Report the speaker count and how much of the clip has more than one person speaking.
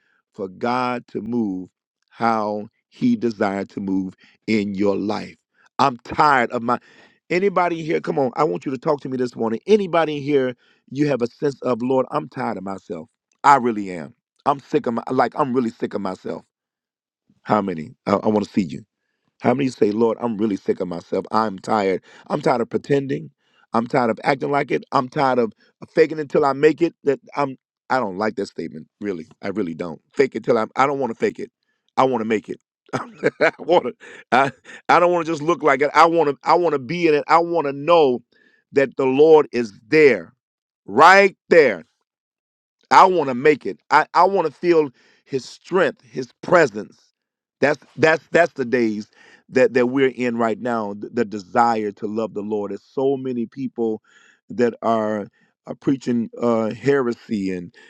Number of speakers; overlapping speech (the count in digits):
1, no overlap